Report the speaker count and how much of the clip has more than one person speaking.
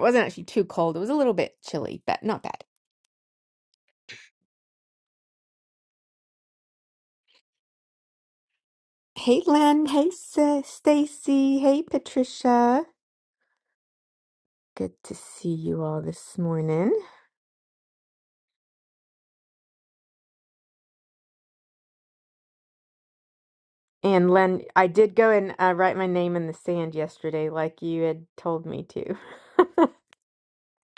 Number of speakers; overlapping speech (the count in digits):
1, no overlap